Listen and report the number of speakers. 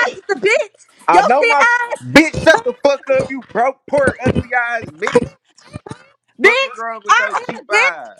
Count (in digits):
2